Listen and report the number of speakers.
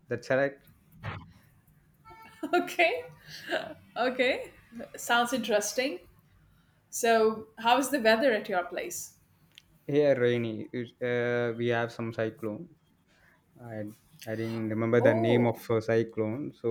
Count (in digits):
2